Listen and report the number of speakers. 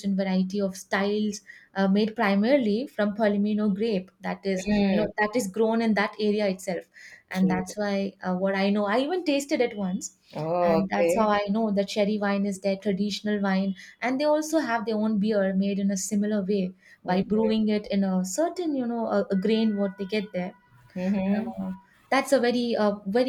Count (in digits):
2